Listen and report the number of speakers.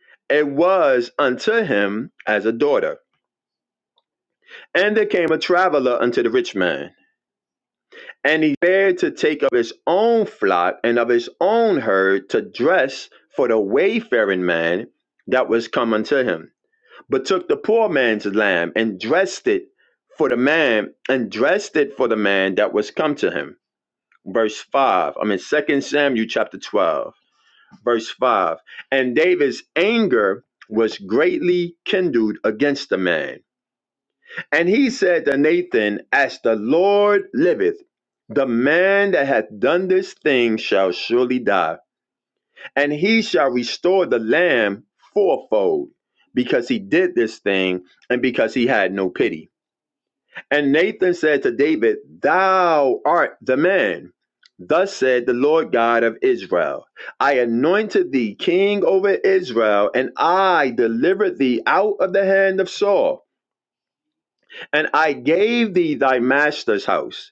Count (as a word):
one